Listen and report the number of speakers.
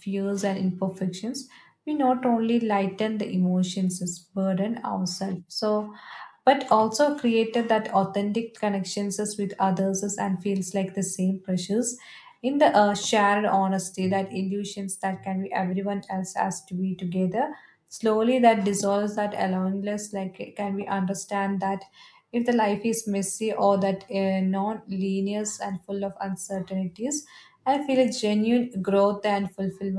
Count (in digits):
1